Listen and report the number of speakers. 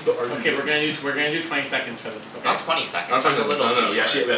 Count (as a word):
three